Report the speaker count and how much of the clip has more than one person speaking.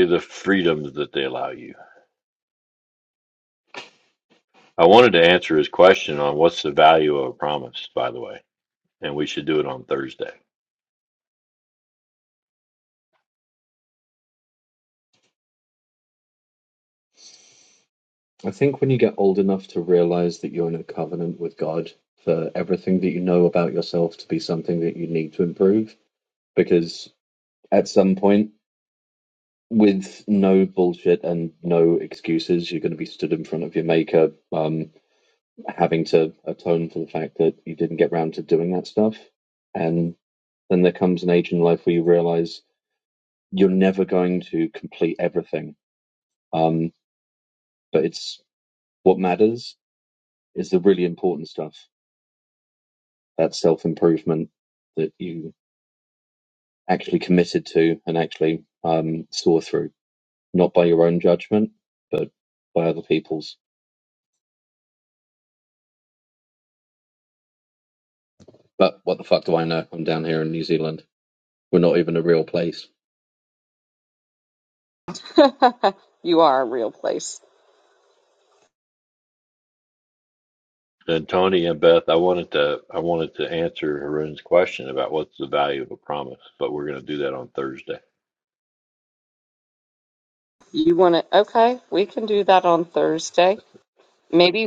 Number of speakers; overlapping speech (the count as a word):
three, no overlap